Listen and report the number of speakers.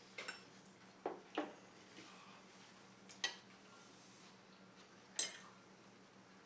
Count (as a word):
zero